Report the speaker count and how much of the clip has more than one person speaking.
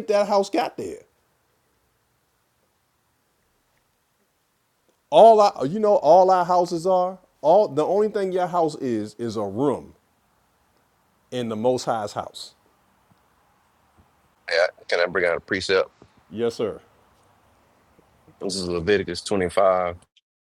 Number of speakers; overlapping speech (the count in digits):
2, no overlap